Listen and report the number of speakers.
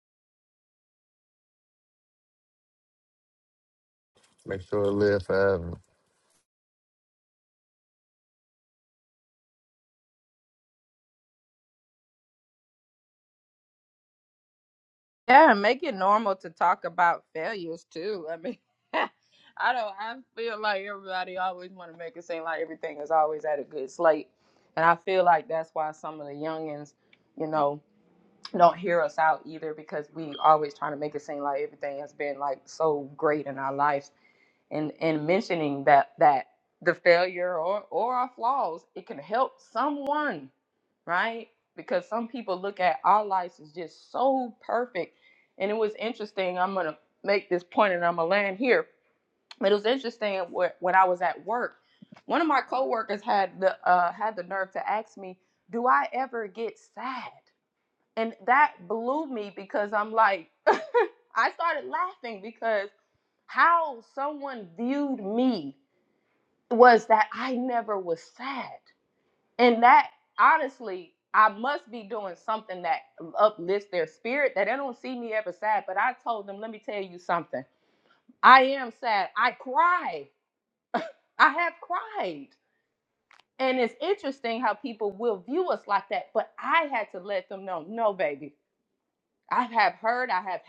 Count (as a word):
two